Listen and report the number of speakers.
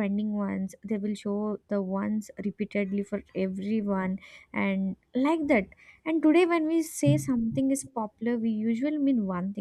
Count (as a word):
one